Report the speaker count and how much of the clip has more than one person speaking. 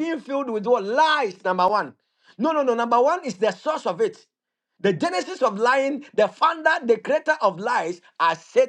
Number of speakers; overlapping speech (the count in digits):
1, no overlap